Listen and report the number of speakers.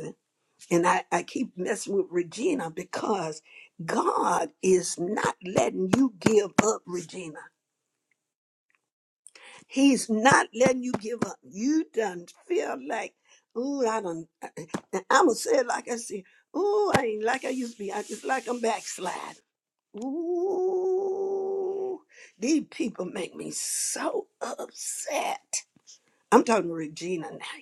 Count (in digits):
1